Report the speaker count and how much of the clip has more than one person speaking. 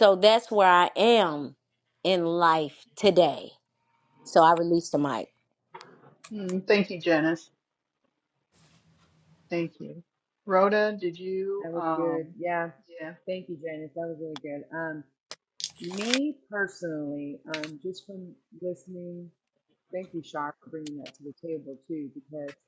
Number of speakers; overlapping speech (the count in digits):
3, about 3%